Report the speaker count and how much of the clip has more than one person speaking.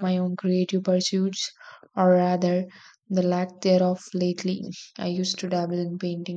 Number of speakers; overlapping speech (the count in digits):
1, no overlap